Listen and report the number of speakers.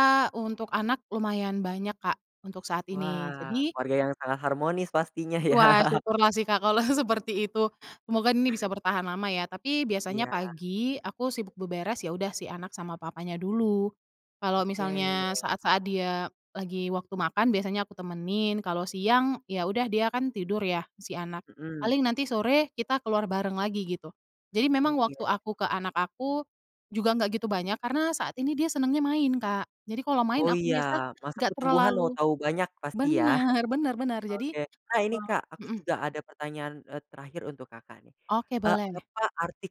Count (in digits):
2